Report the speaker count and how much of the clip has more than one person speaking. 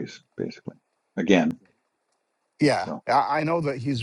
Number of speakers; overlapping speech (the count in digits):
2, about 4%